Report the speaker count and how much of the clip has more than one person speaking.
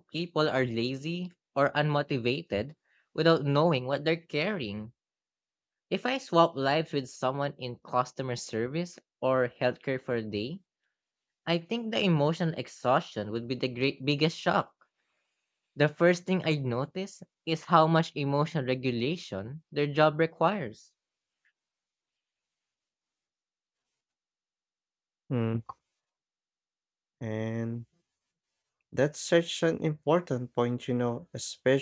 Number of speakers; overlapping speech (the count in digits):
2, no overlap